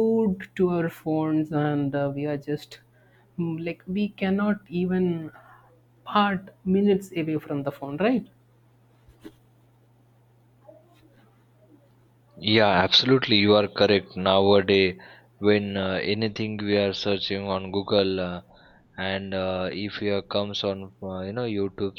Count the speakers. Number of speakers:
two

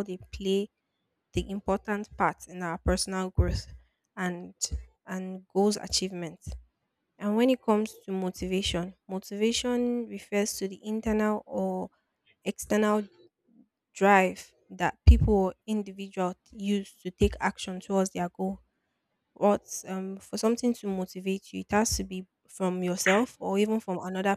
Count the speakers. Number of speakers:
one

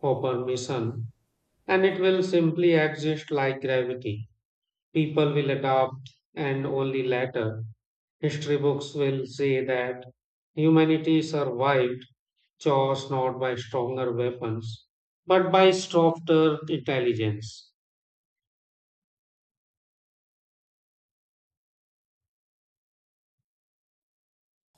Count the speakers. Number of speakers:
one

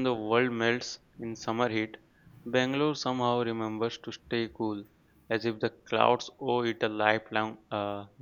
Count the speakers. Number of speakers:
one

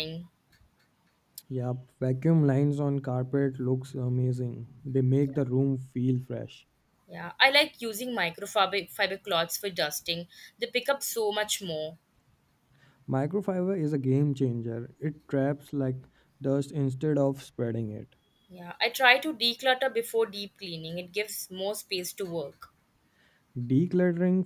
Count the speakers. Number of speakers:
two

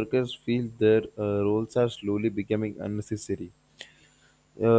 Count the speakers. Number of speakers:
one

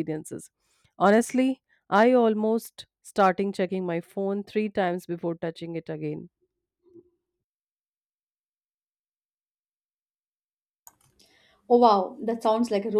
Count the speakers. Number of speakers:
two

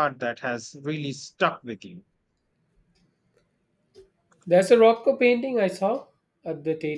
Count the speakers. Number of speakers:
two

